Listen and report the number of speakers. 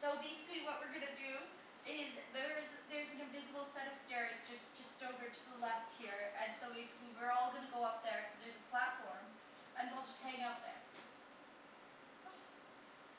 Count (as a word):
one